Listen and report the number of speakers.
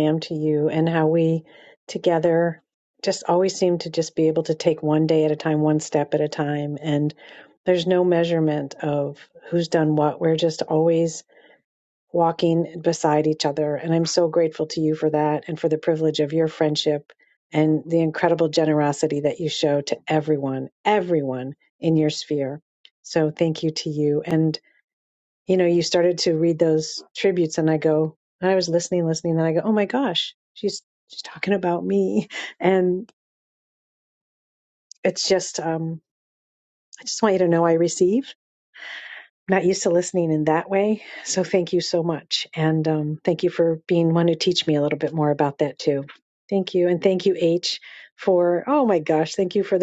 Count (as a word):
one